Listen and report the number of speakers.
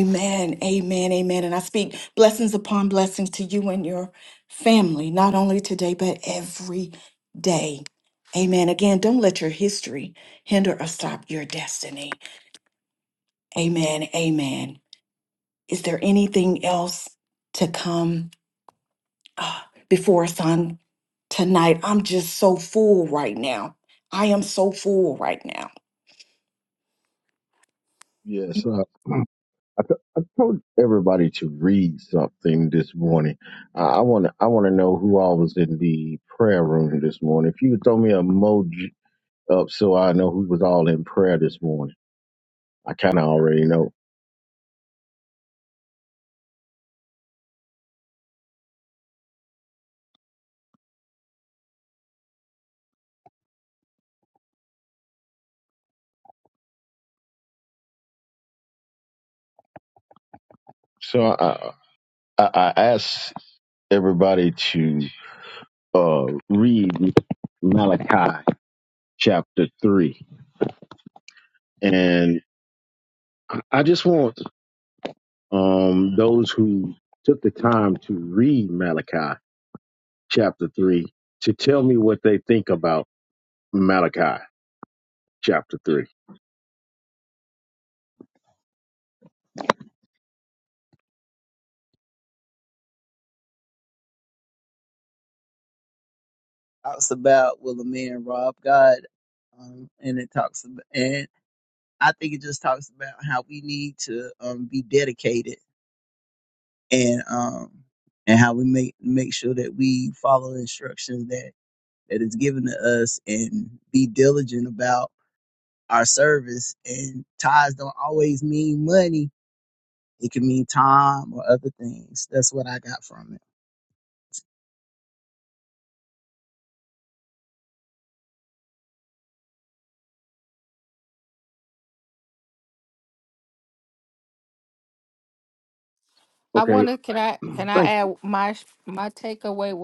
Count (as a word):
four